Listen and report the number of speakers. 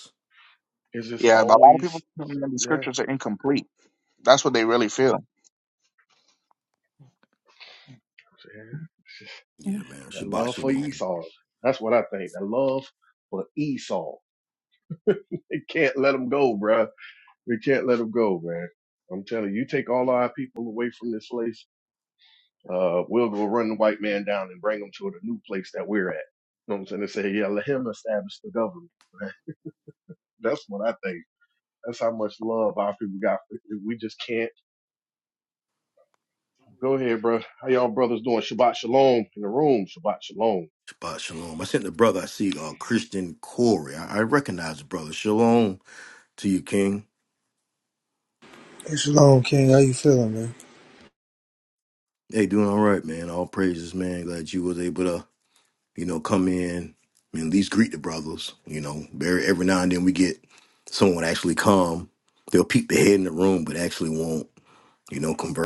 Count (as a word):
four